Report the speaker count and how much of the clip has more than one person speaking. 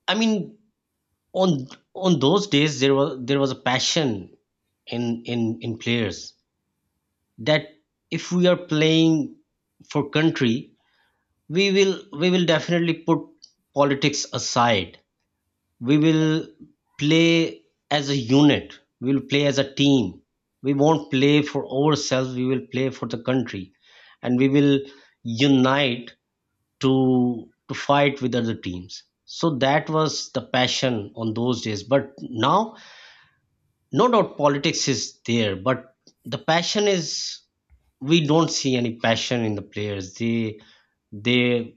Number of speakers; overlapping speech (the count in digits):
1, no overlap